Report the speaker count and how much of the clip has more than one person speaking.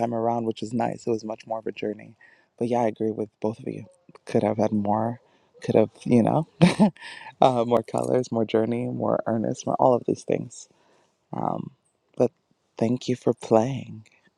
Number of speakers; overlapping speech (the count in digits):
1, no overlap